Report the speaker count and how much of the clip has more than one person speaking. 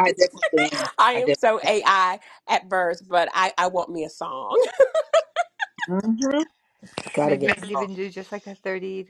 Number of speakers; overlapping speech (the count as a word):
three, about 13%